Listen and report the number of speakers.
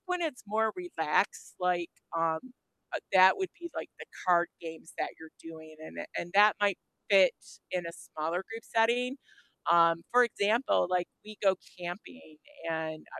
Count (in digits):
1